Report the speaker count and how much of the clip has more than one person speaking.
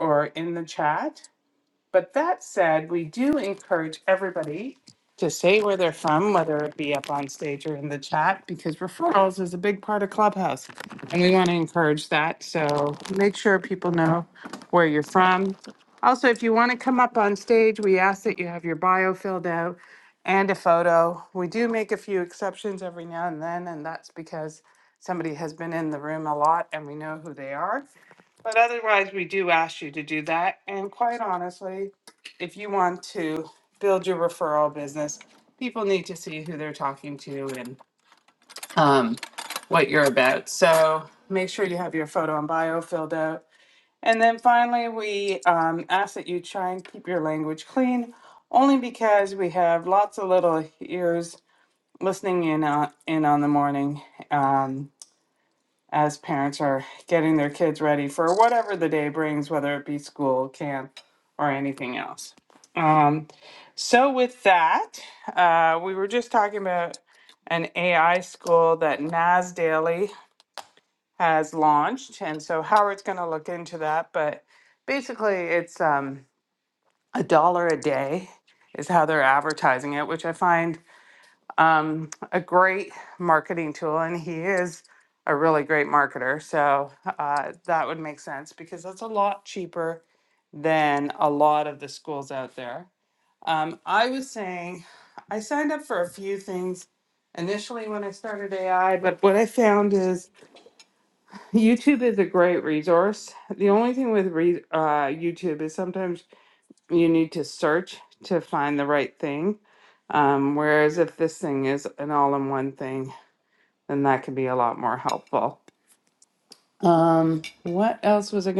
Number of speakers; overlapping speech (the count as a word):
one, no overlap